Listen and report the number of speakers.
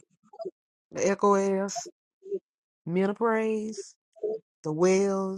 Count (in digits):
1